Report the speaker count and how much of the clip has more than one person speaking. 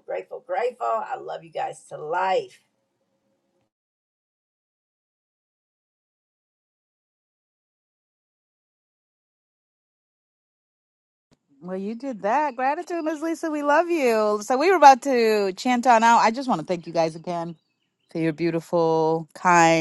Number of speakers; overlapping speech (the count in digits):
2, no overlap